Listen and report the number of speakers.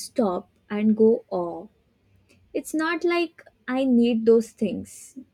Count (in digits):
1